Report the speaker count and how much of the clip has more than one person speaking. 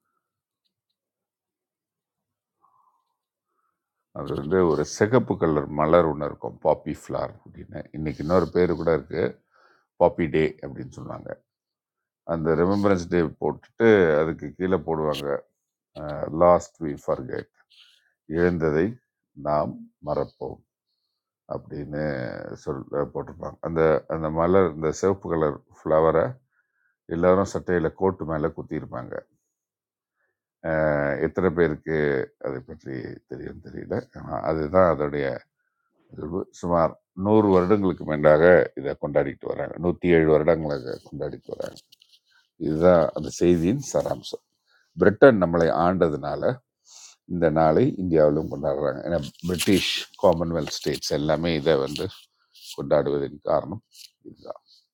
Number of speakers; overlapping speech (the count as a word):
one, no overlap